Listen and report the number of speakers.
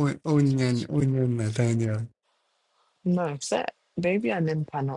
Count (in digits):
2